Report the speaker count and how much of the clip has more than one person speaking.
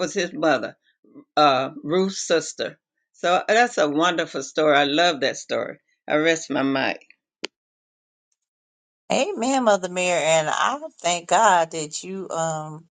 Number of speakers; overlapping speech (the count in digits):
2, no overlap